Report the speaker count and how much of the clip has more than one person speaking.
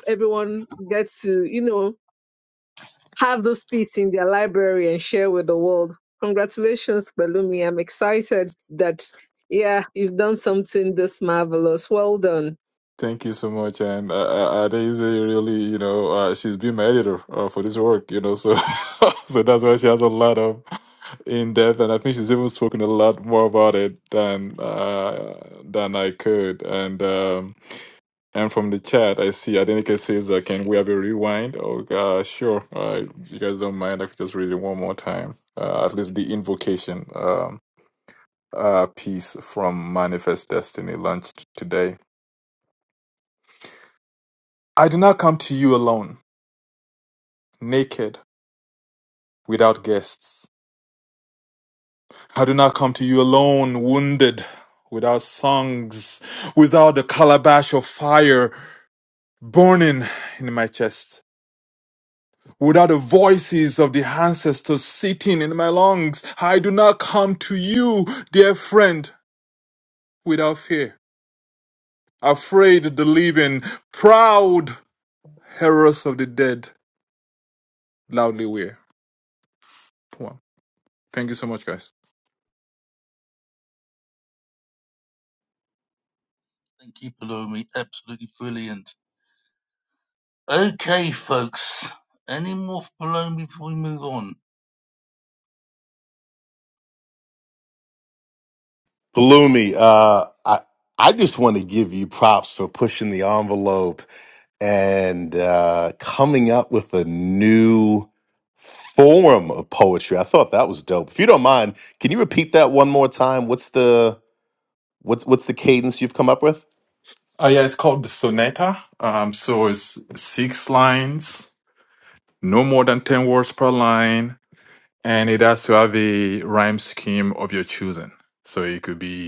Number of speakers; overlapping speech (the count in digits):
4, no overlap